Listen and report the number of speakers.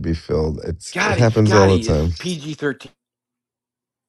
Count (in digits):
2